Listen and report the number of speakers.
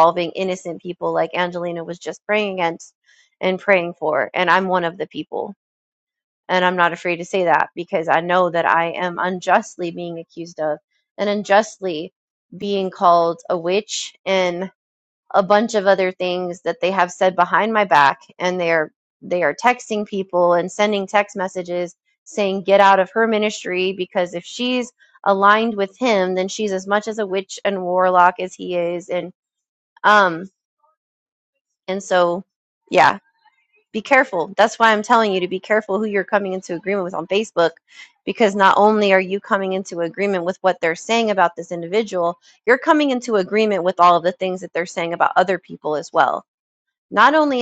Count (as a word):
one